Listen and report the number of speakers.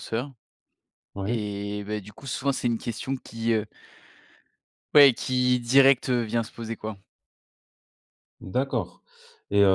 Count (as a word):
two